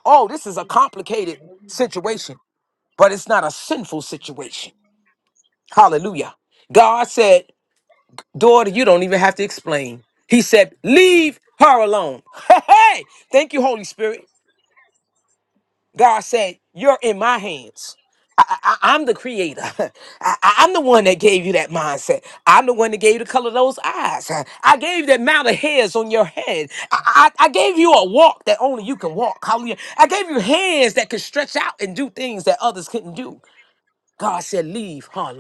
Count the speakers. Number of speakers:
1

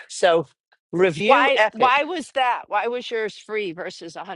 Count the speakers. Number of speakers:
2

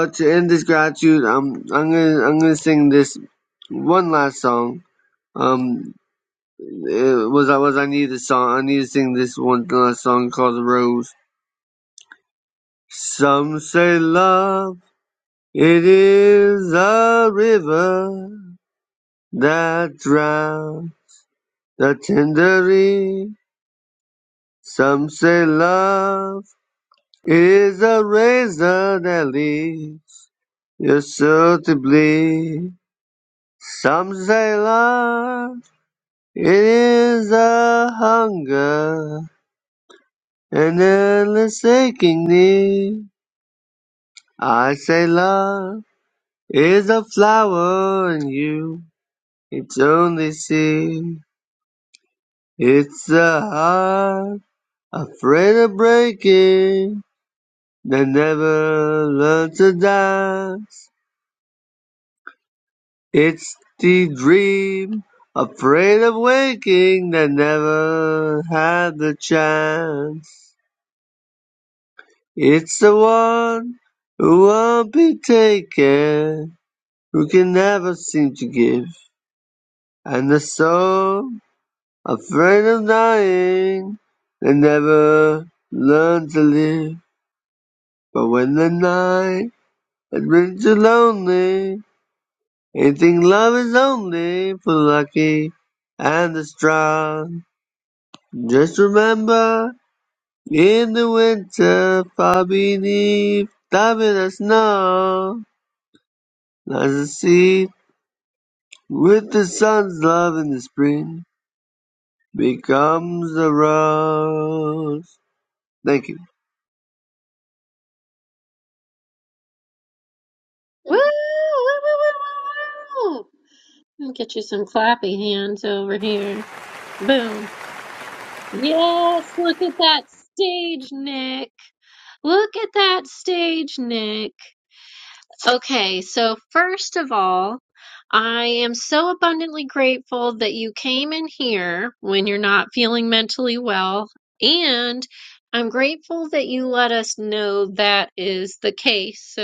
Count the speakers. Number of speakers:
2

